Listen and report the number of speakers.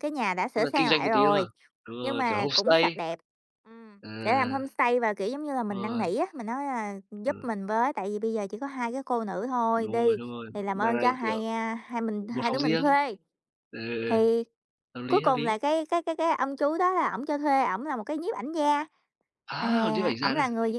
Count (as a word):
two